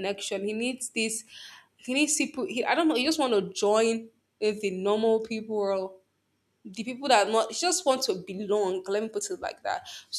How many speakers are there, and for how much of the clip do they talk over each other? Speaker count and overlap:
1, no overlap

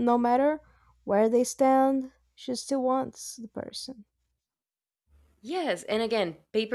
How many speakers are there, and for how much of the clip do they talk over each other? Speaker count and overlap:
2, no overlap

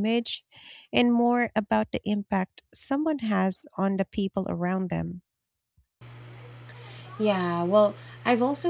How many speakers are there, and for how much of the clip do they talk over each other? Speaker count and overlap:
2, no overlap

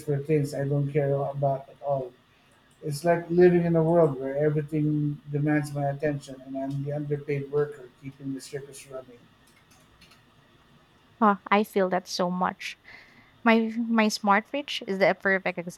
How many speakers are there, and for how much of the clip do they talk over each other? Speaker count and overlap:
2, no overlap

